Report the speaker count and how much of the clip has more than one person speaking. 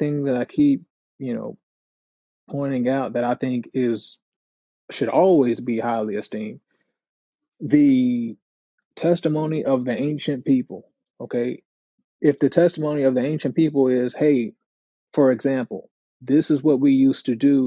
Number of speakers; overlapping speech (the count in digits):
1, no overlap